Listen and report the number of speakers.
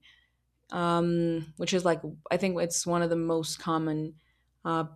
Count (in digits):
1